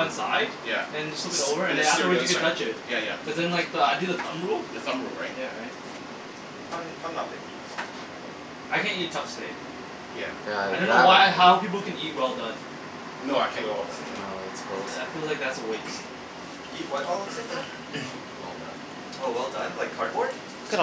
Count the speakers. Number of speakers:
four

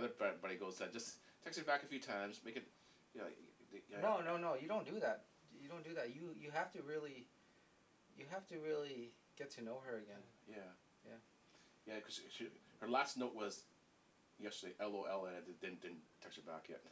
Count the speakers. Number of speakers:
two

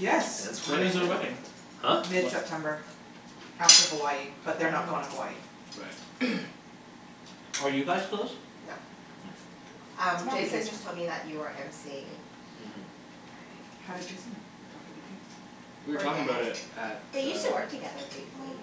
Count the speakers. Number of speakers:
four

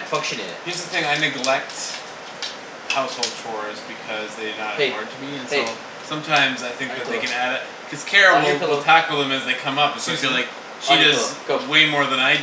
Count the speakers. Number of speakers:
two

